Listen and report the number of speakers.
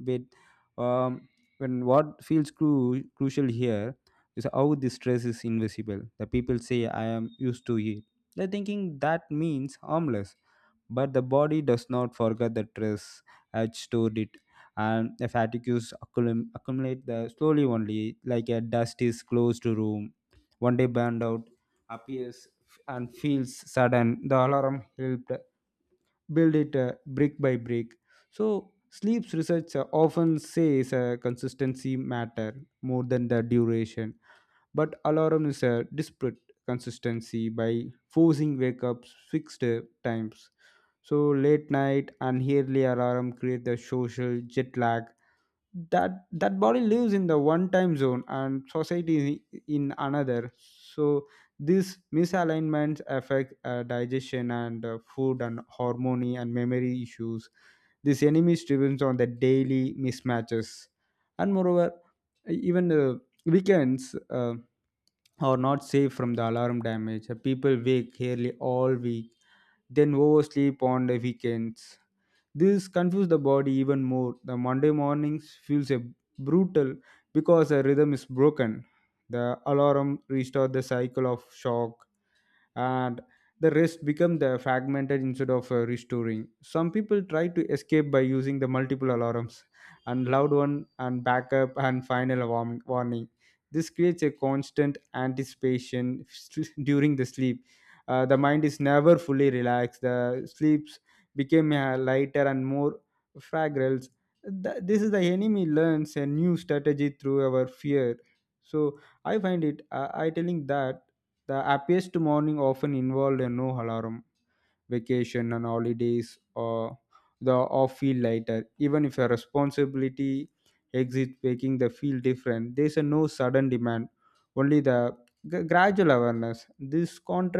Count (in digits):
1